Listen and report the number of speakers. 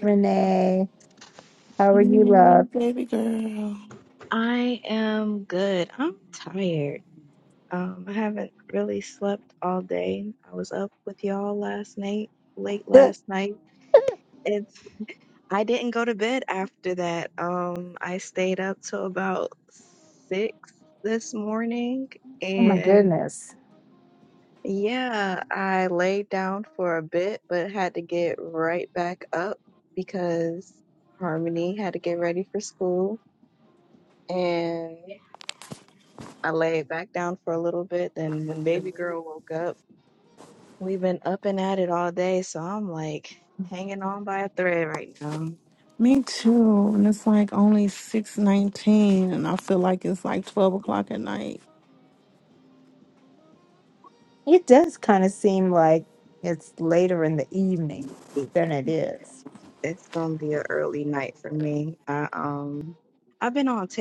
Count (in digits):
3